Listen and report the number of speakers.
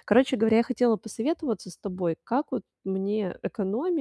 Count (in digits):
1